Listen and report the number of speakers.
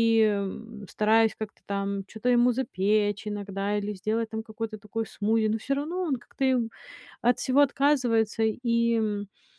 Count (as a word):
one